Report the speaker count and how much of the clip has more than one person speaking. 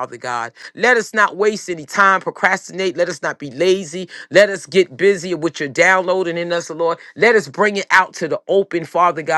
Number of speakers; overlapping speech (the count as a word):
one, no overlap